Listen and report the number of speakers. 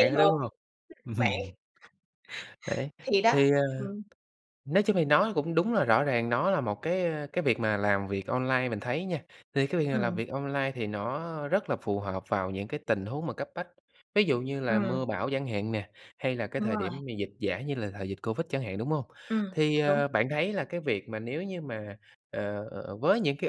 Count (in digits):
2